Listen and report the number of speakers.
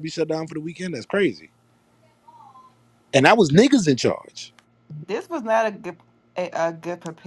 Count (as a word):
two